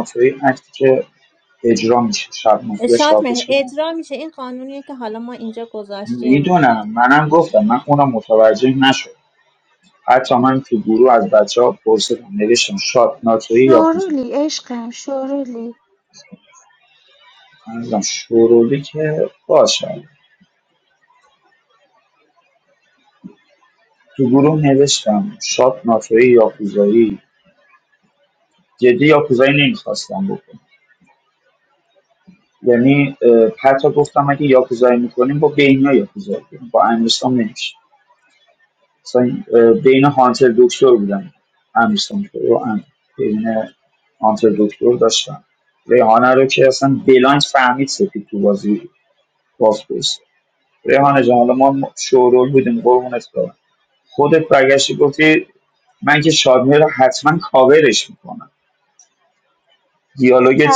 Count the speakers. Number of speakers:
3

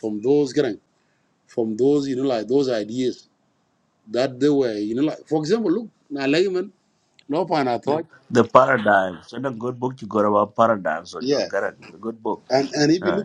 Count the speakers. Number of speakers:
2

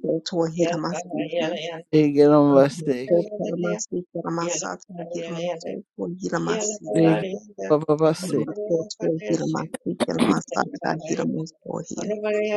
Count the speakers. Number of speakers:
3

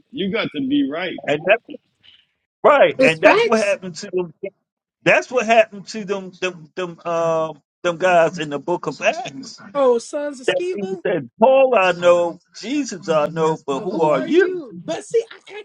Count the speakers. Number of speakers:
3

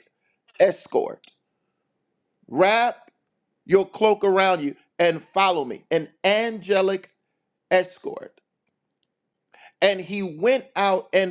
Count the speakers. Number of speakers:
1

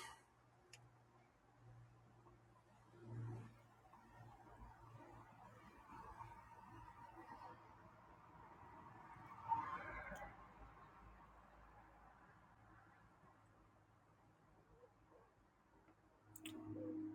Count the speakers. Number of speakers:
0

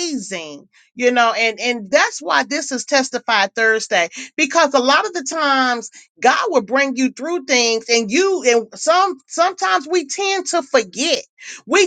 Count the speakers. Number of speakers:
1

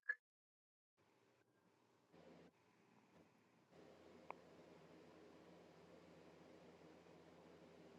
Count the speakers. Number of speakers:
0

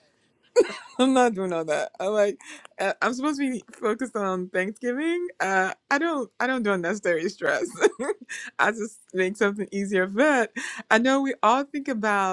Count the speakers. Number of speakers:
1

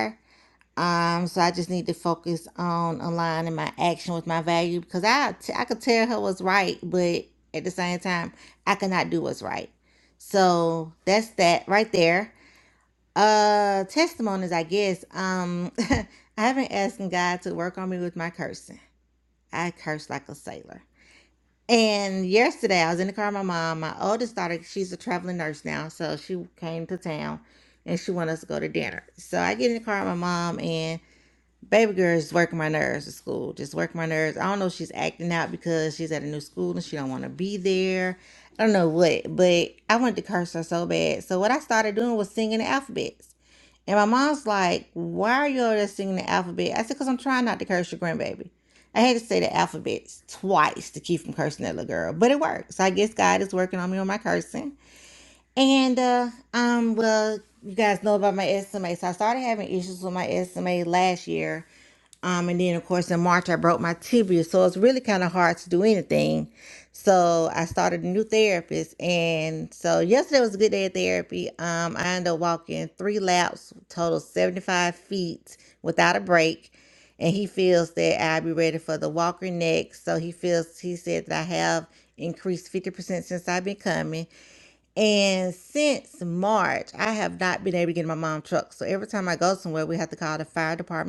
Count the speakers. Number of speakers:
1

